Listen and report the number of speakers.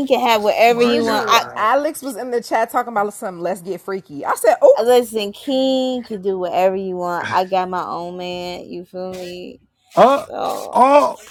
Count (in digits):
3